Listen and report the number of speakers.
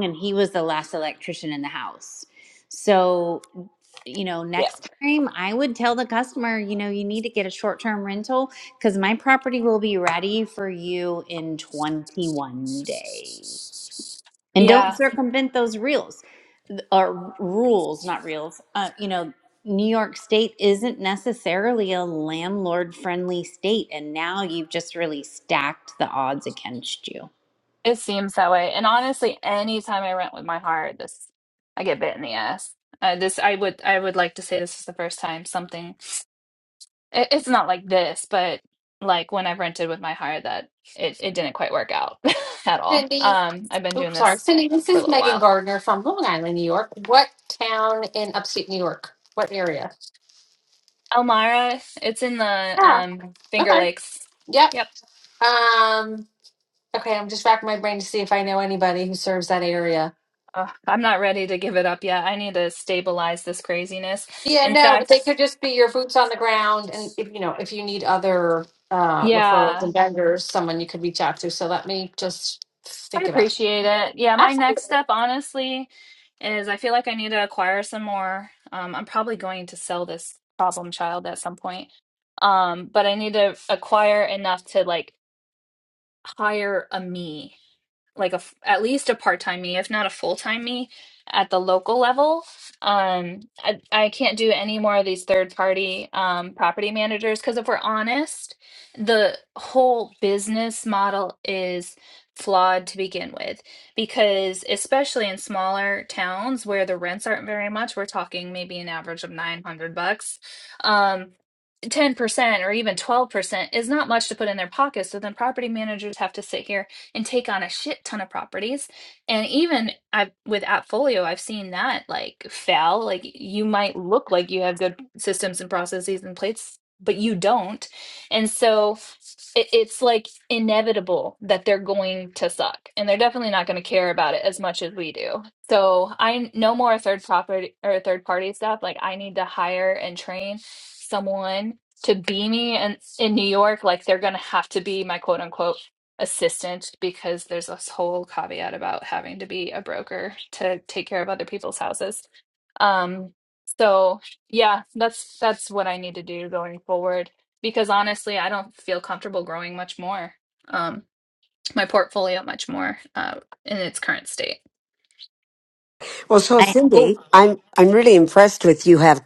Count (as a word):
four